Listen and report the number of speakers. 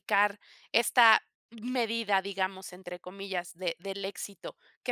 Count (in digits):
1